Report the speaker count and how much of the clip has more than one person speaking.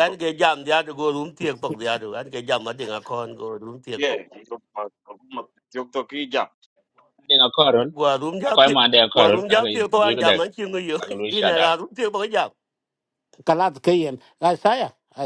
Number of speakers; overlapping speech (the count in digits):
4, about 17%